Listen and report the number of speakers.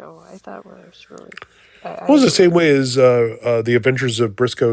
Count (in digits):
2